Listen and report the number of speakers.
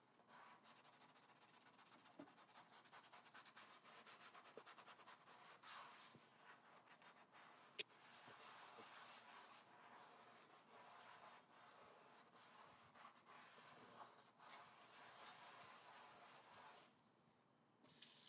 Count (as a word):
zero